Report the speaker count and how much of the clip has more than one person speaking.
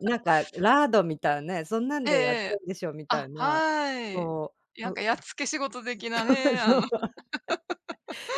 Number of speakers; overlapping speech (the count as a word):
two, about 23%